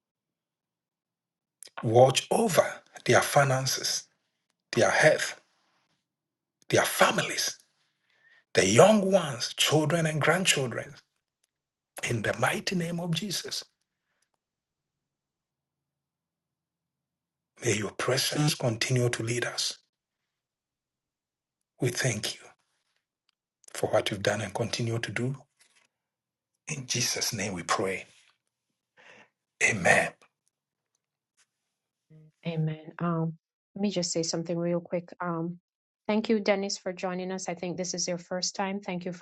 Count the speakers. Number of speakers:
two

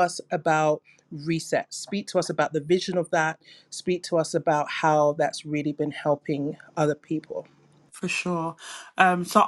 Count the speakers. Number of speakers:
two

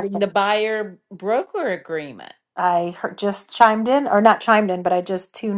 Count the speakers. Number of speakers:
two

